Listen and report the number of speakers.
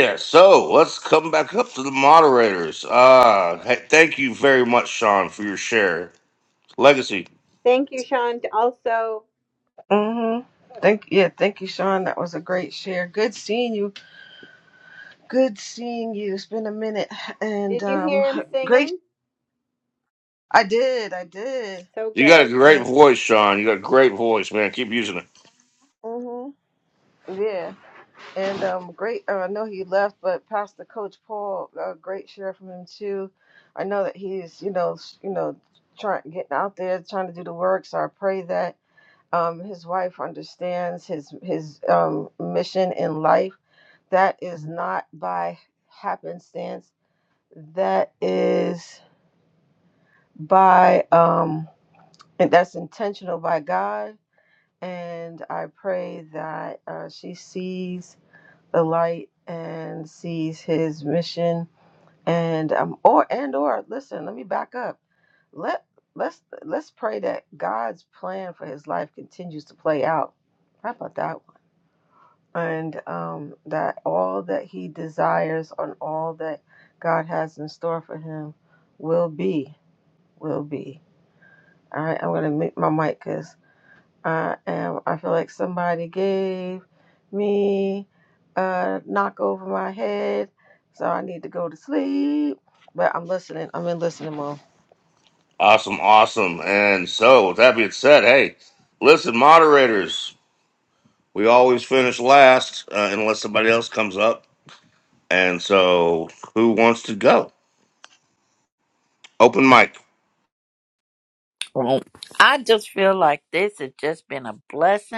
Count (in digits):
4